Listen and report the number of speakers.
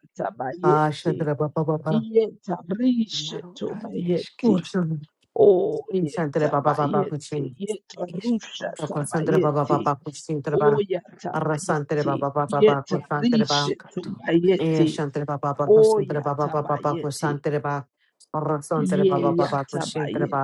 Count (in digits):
2